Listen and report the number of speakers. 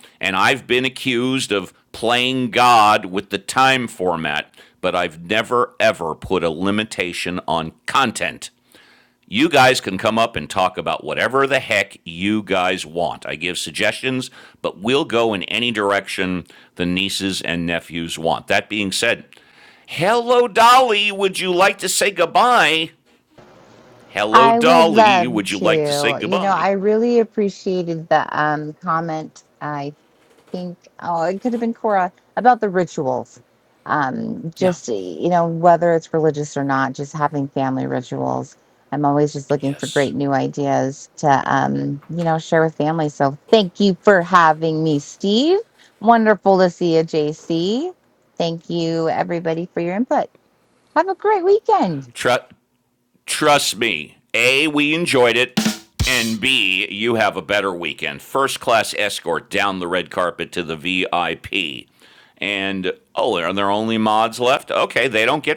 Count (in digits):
2